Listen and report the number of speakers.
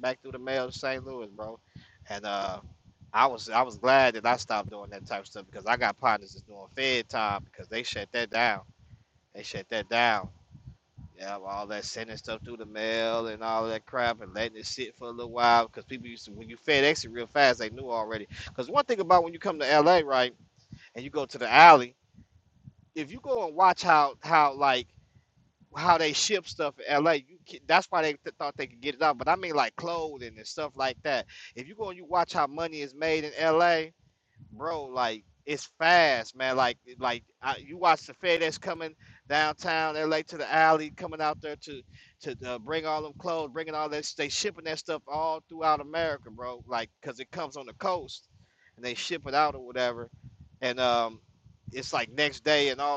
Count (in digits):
1